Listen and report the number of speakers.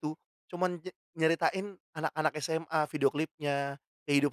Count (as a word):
one